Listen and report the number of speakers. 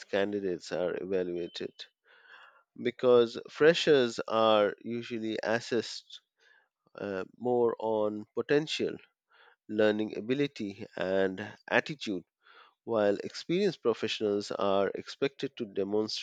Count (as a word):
one